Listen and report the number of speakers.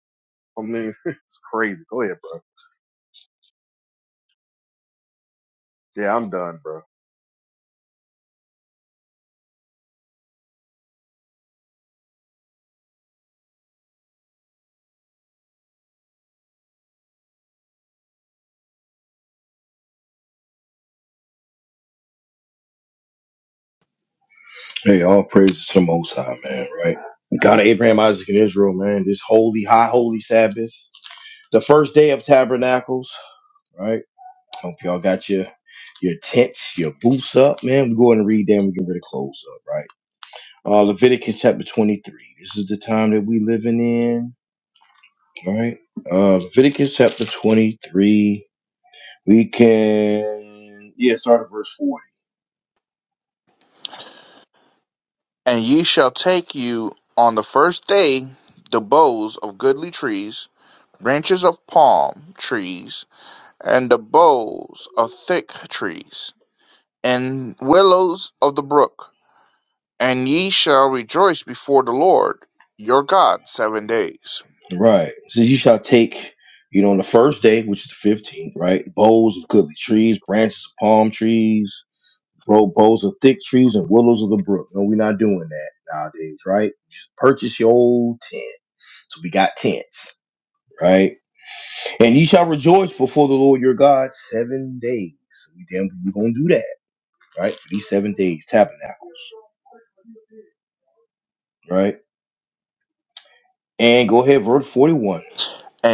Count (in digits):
3